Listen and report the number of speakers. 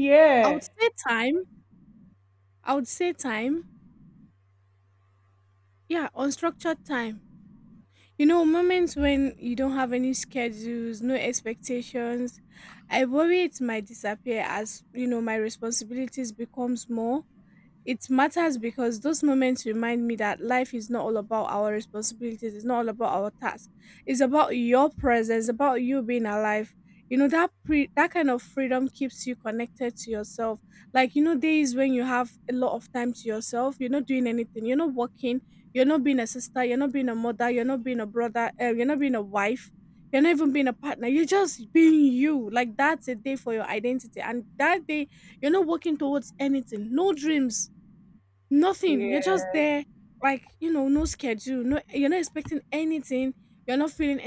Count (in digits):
2